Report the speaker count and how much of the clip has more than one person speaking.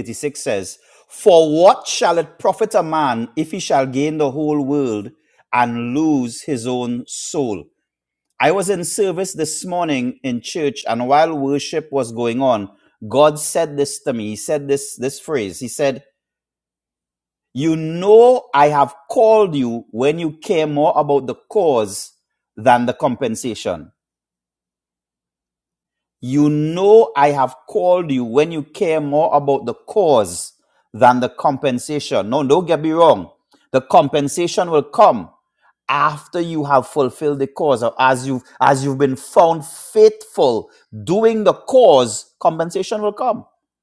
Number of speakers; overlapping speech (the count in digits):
1, no overlap